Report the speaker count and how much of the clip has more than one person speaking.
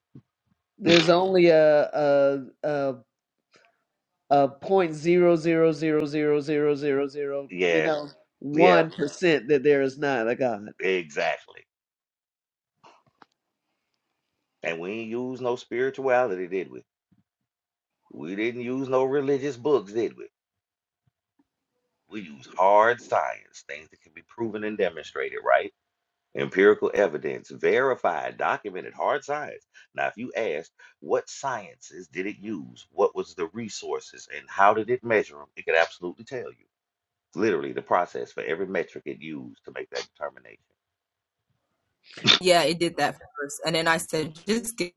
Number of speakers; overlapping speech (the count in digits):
3, about 2%